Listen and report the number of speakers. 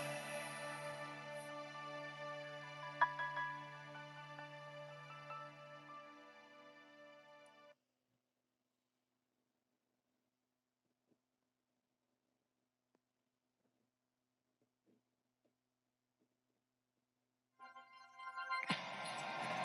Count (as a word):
zero